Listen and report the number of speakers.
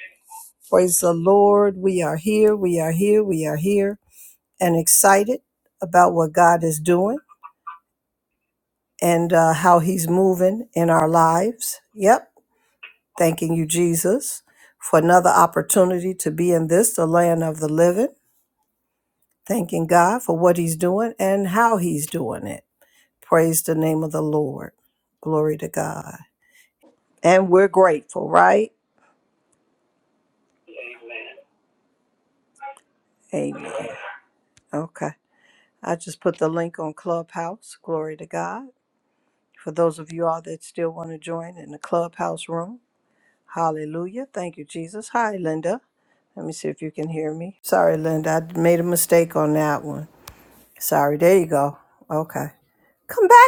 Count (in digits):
1